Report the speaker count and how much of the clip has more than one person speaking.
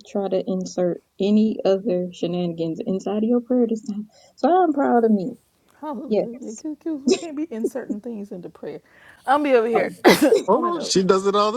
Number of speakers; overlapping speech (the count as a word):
three, about 8%